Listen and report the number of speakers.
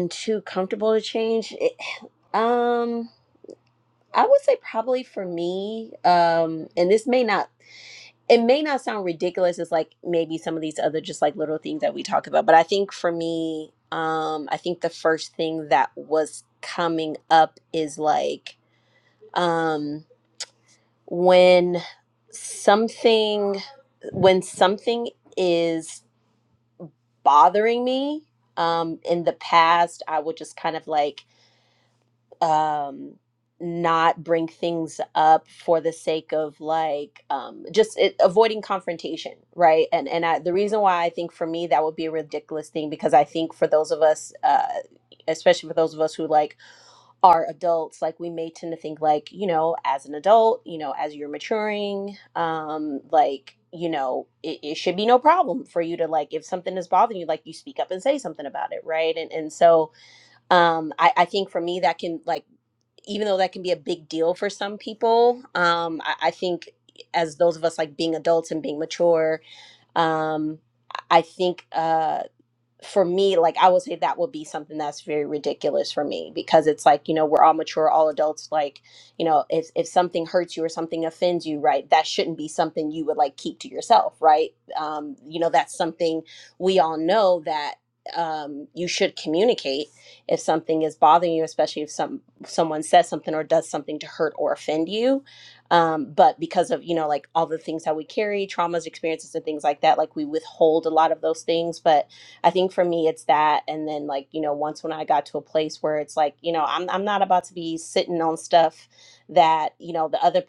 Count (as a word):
one